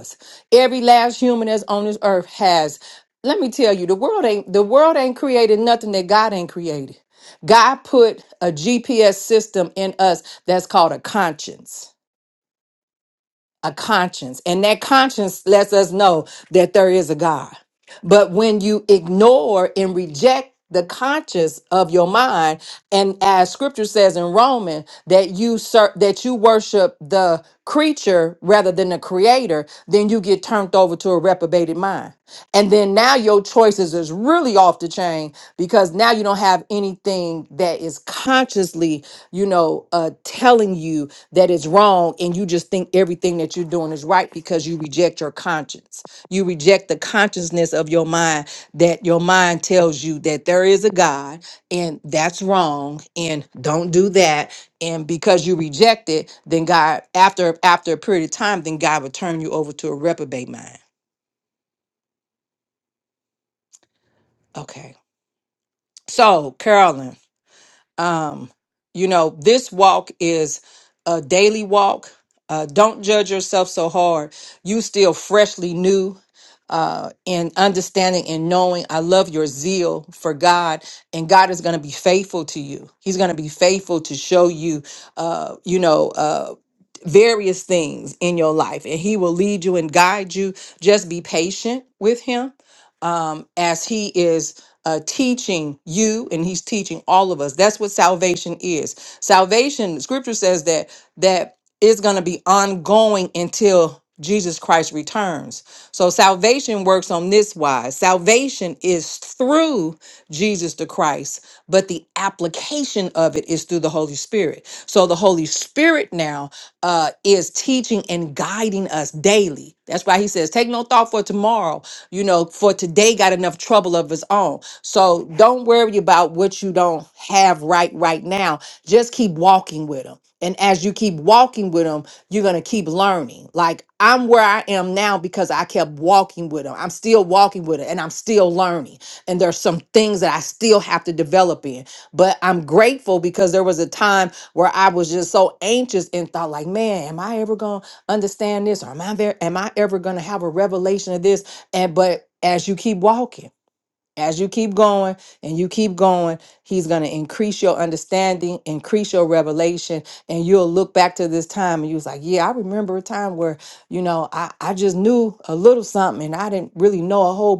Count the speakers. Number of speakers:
1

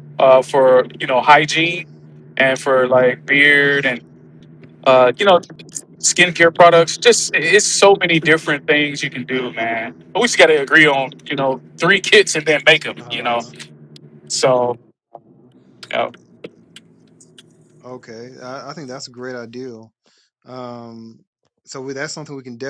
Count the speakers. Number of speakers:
2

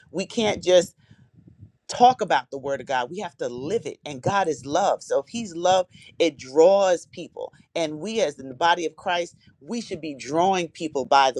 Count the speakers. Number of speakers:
1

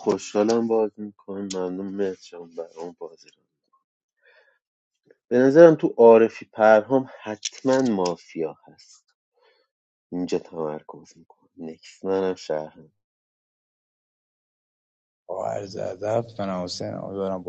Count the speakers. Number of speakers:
2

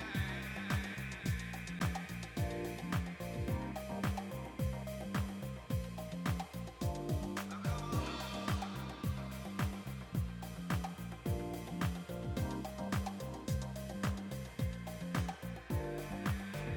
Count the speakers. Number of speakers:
0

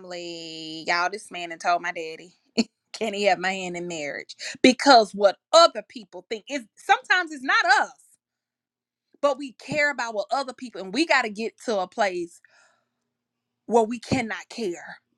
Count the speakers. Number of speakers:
1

